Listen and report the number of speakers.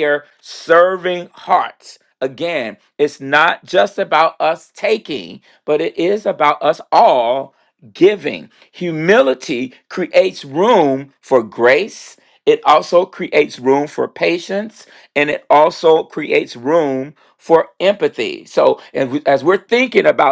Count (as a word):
one